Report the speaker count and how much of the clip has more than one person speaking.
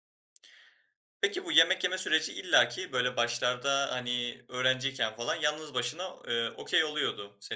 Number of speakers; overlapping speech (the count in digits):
1, no overlap